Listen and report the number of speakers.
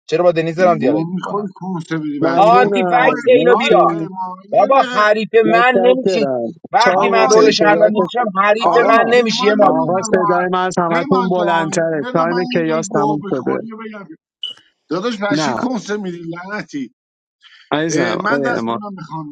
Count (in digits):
3